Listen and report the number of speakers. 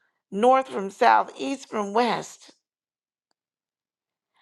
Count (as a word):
one